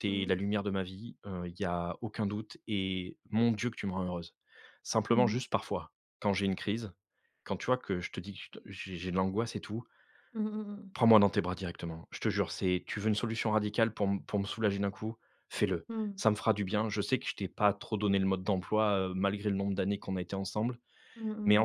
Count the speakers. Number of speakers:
2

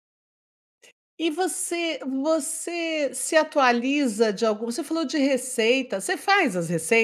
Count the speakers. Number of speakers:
1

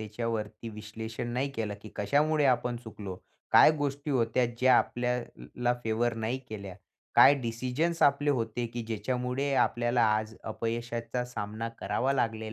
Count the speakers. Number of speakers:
1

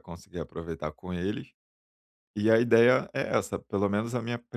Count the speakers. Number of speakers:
1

